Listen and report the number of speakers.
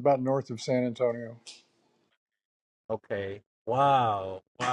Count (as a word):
two